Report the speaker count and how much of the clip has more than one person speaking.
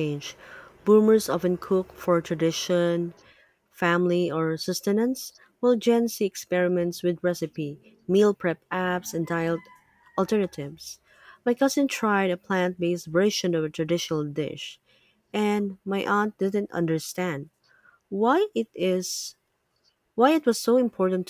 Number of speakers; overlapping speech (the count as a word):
one, no overlap